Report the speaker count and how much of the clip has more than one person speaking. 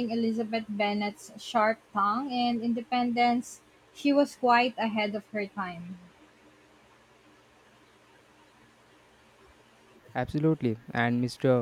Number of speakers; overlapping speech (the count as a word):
two, no overlap